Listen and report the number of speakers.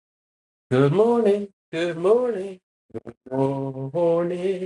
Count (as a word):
one